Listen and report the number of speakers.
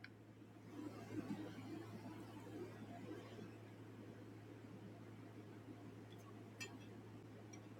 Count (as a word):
zero